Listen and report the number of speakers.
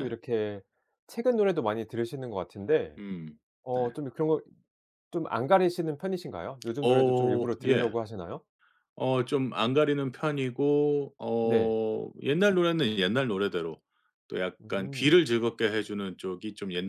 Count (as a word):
two